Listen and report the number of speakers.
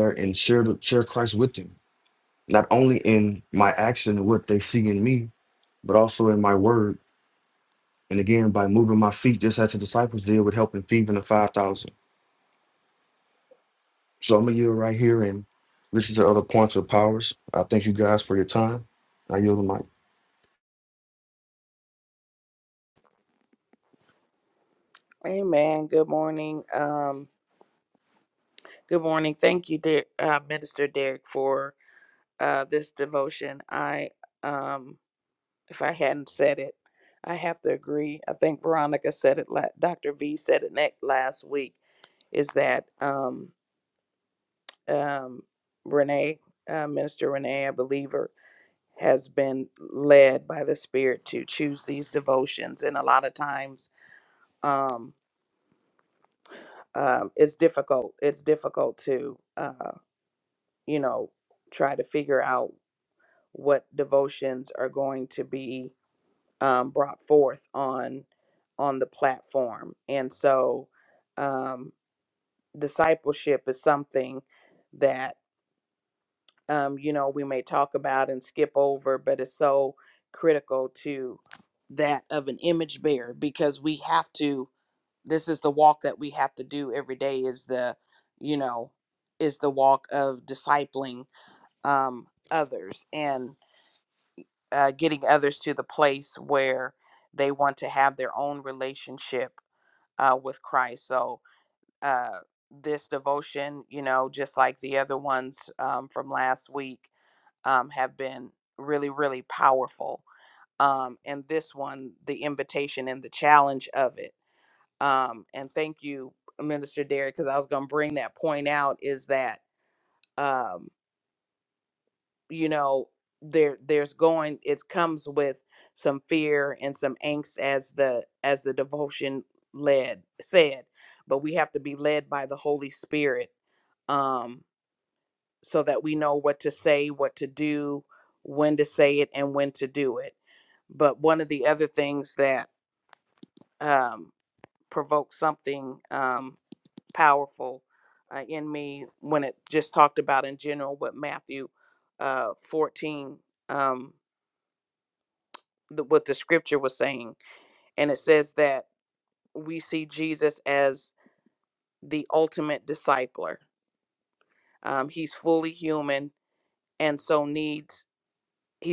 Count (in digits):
2